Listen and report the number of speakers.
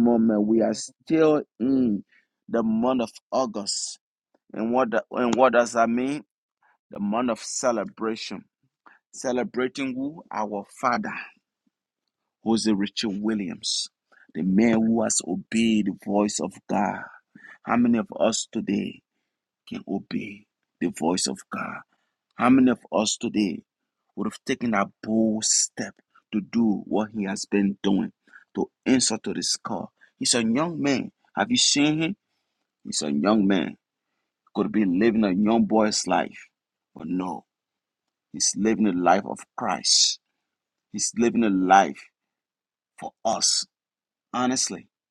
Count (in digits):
1